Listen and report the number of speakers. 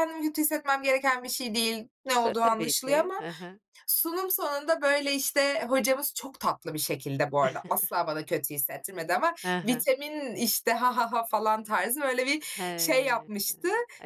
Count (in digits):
2